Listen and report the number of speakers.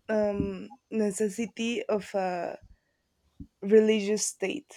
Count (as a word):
one